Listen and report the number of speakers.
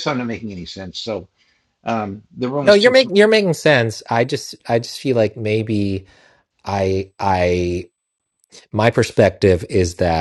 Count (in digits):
2